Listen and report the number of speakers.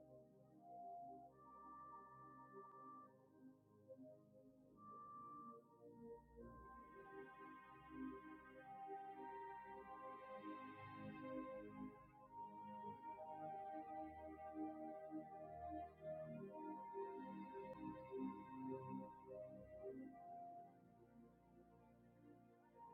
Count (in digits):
0